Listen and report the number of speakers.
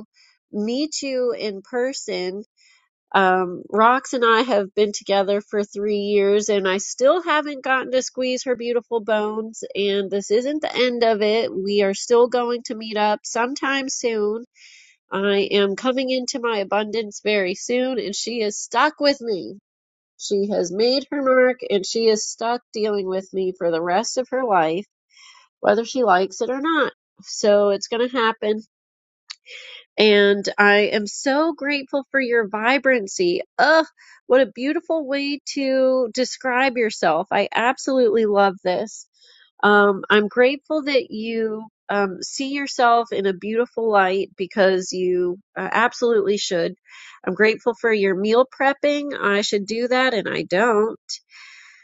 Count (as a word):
one